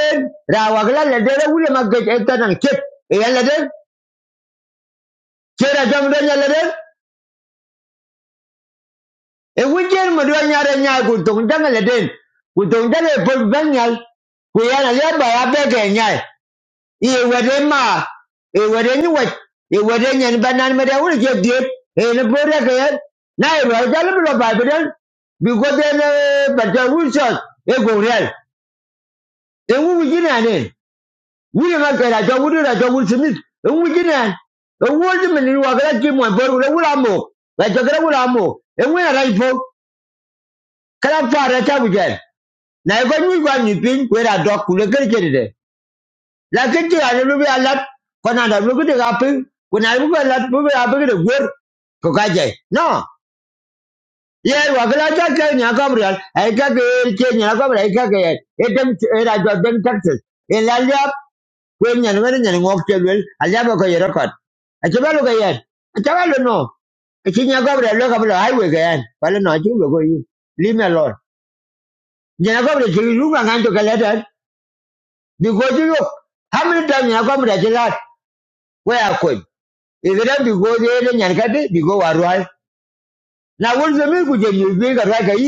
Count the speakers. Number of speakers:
one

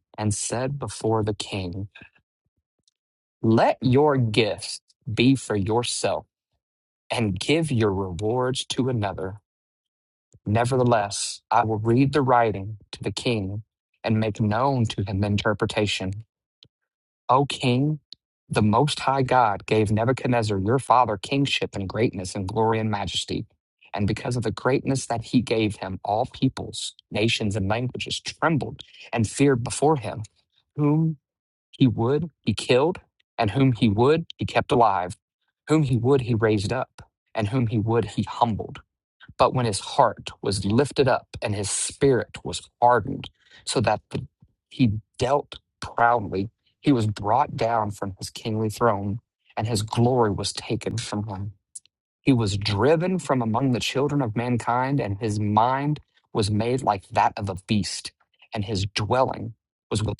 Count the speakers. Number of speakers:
one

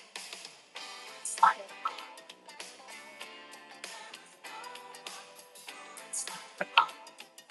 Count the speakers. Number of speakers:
zero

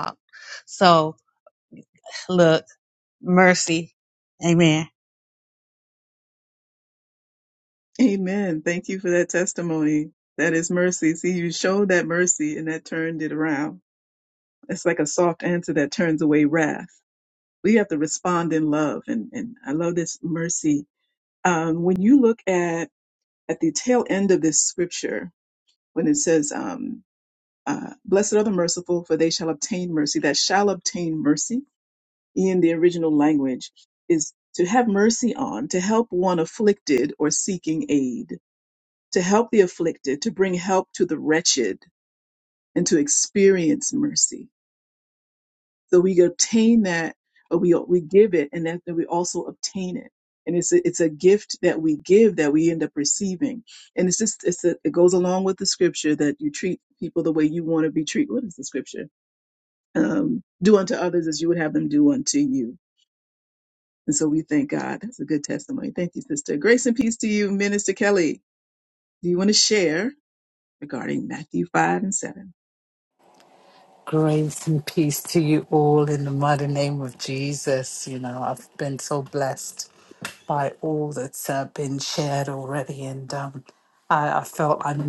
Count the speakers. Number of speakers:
three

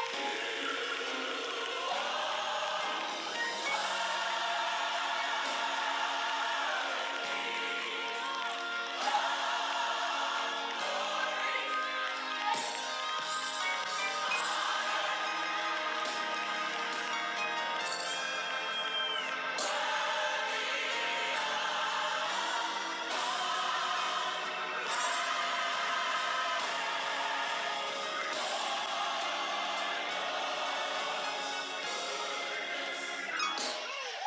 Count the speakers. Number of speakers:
zero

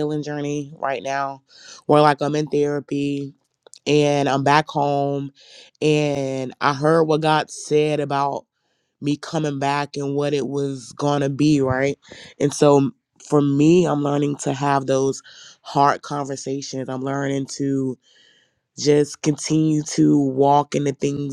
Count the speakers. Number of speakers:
one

